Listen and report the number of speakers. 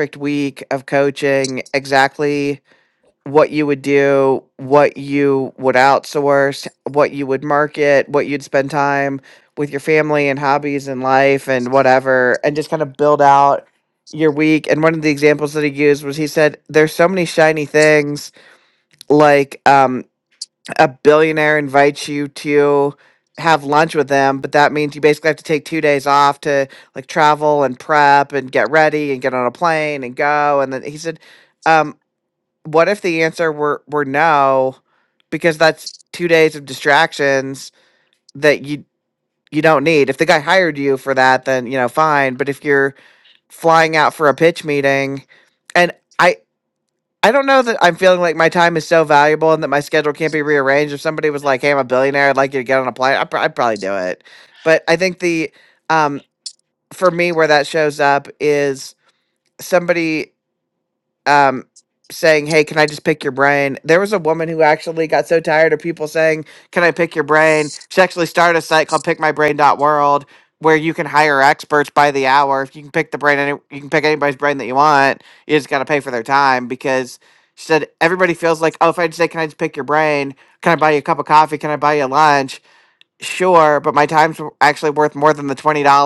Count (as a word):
one